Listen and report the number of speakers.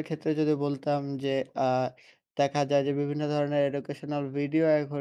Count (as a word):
one